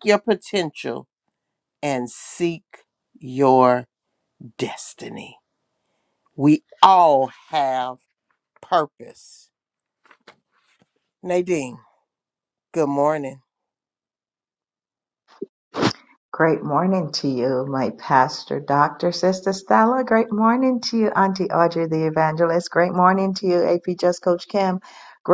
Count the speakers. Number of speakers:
2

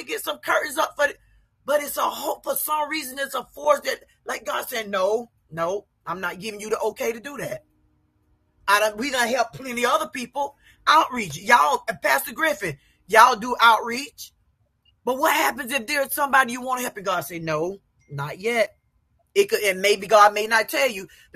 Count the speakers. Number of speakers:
1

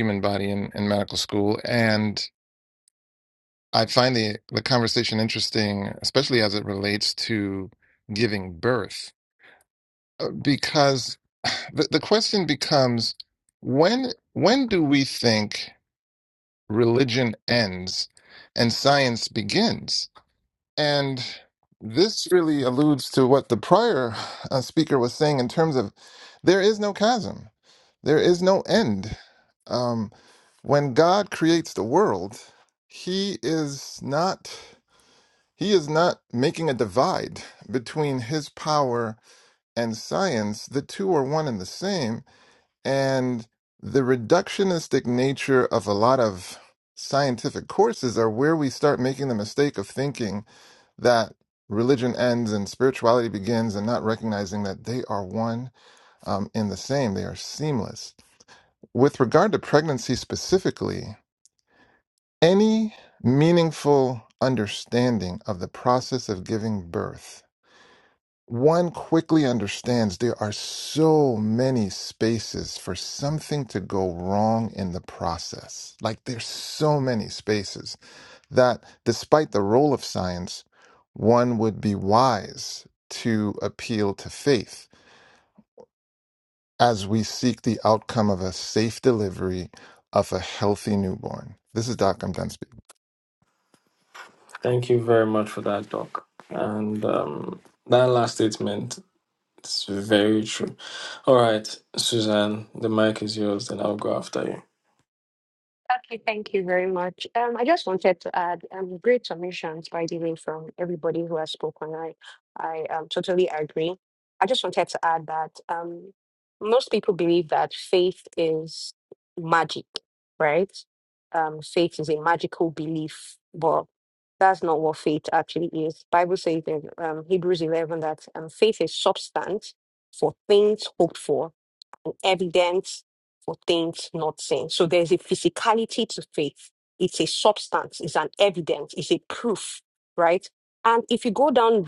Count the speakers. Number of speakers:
3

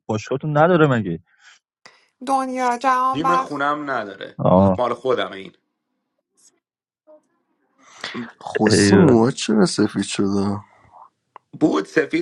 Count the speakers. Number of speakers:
4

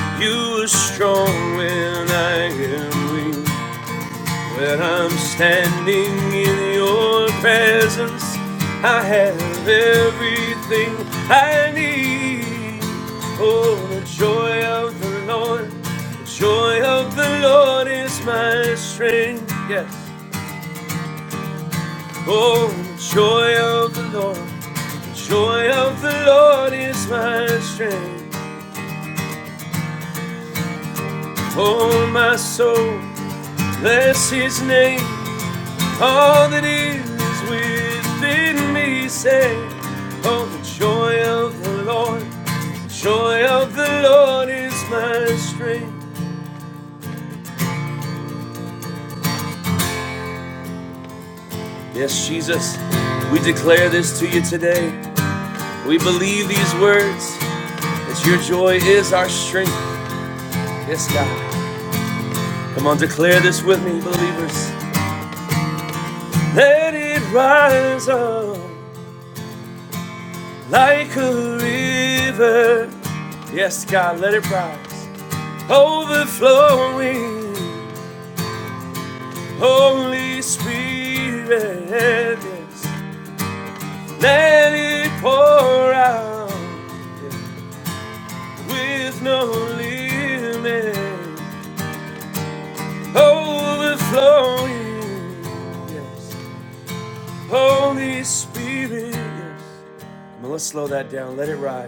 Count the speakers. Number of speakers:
1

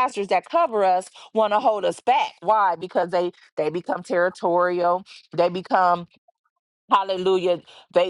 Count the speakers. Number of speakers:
1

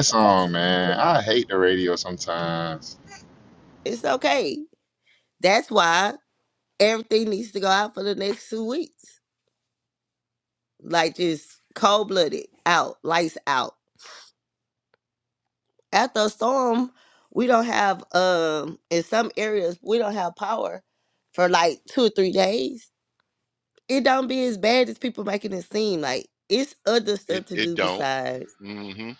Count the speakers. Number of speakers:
3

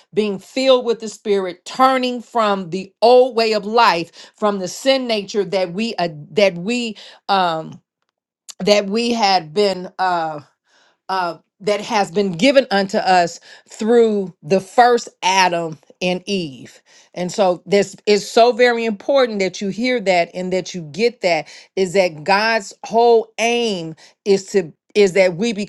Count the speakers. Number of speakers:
1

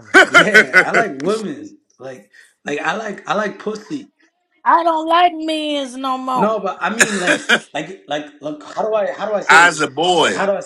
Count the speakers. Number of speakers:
3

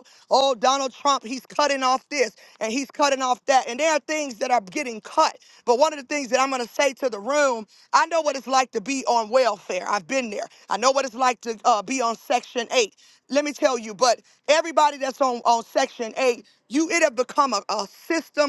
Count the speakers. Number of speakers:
1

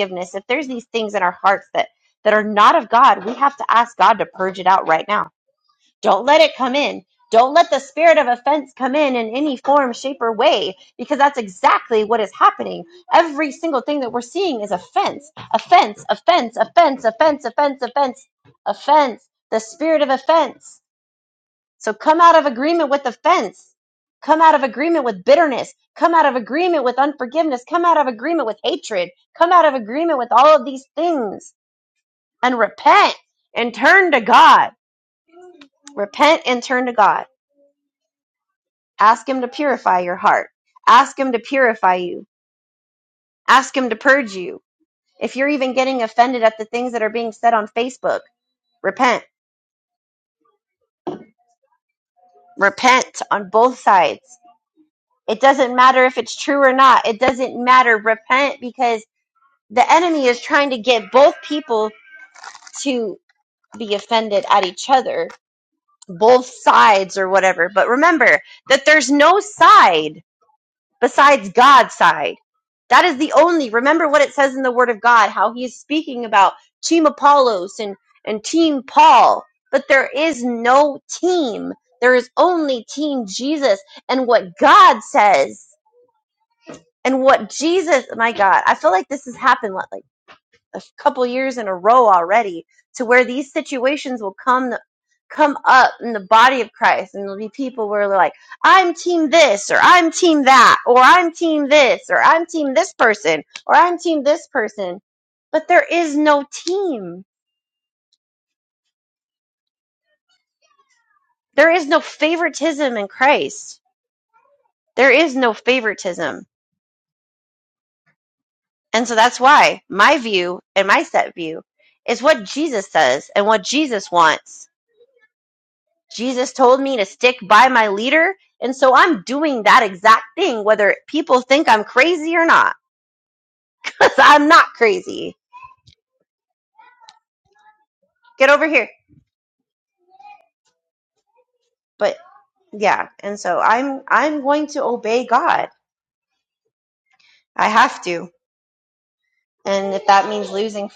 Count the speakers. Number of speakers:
1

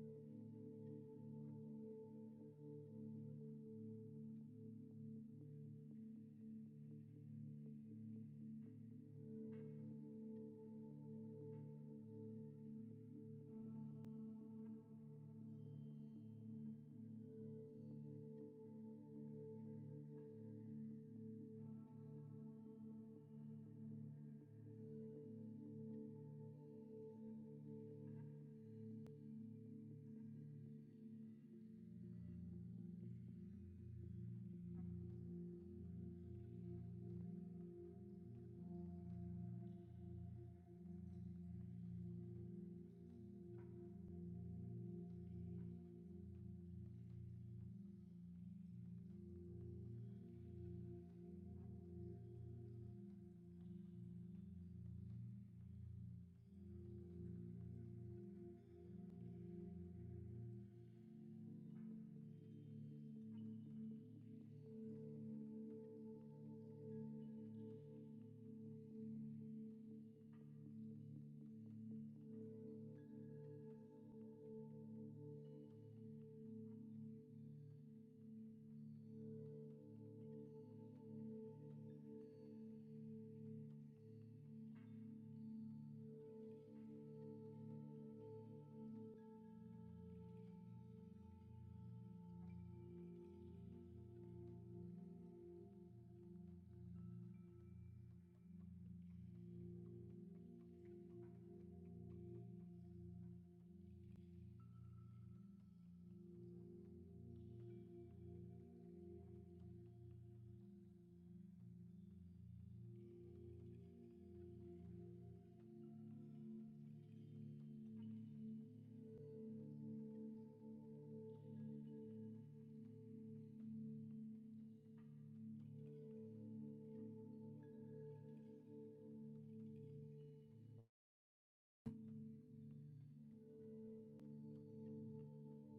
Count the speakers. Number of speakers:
0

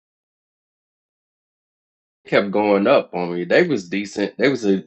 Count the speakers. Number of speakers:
1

